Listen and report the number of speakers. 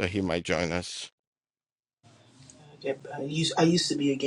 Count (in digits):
2